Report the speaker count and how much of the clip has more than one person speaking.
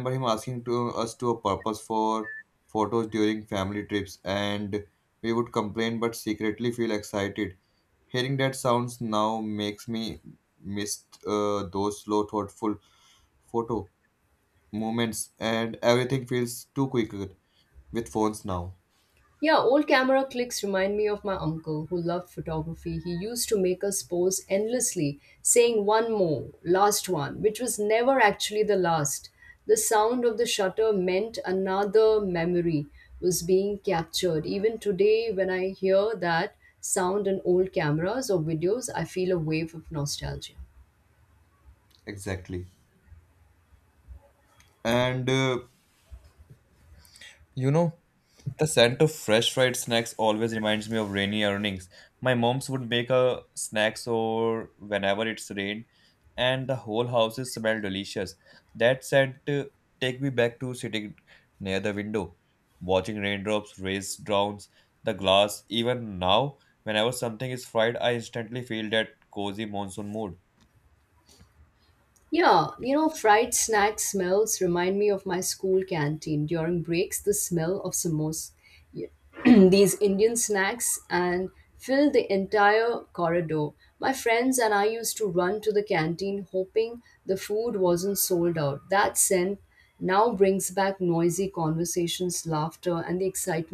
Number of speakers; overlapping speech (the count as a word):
two, no overlap